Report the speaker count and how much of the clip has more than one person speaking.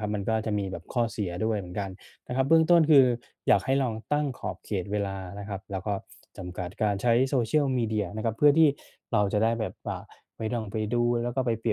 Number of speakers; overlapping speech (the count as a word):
one, no overlap